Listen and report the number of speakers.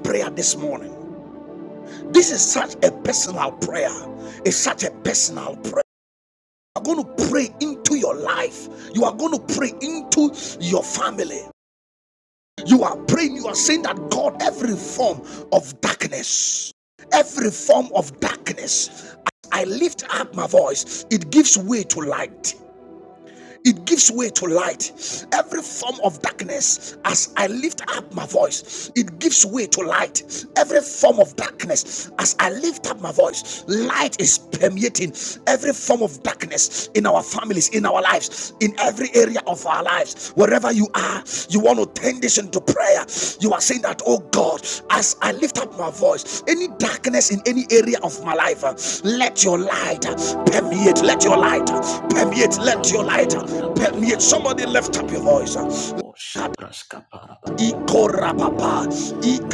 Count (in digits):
2